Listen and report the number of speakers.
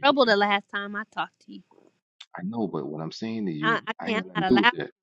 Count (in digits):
2